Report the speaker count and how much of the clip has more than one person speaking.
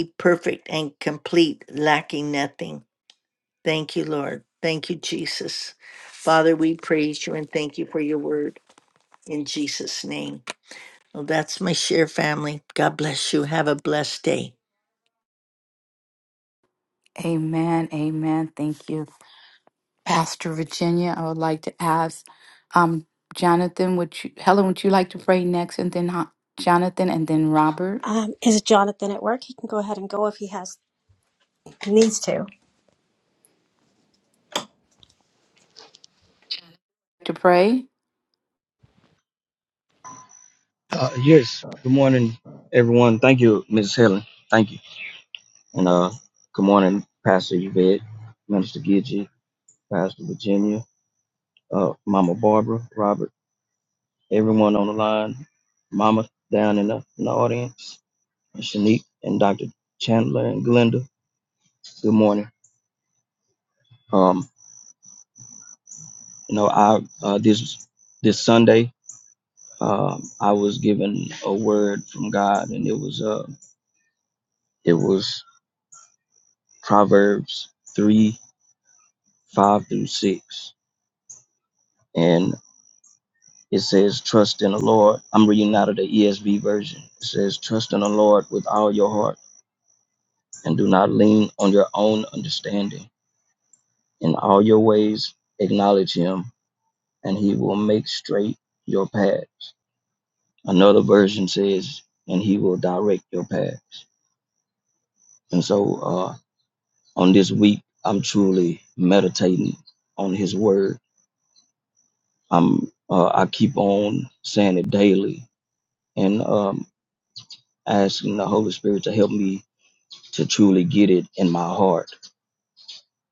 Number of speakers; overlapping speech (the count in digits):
4, no overlap